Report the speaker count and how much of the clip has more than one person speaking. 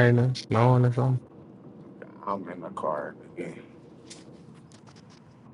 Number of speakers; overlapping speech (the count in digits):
2, no overlap